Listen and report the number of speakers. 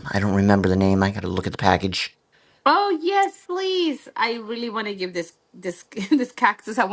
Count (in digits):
2